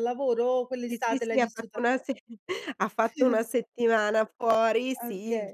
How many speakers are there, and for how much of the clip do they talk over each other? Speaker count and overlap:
two, about 27%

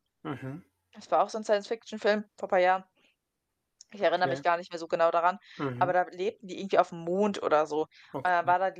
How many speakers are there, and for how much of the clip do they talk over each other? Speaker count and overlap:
two, about 8%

